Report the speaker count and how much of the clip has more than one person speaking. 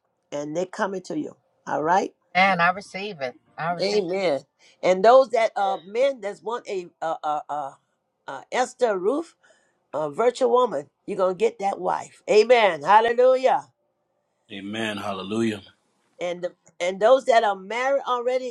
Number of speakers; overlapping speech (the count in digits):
3, about 1%